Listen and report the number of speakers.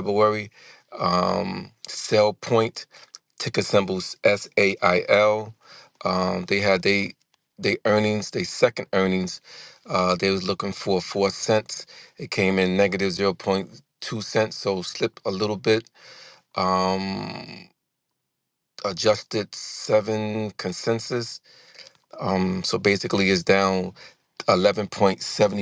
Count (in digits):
1